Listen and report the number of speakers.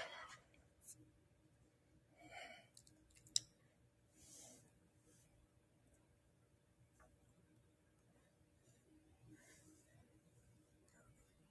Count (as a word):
zero